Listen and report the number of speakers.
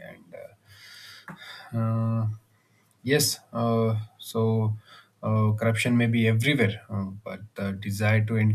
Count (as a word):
one